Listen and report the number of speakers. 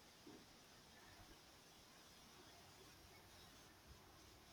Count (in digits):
0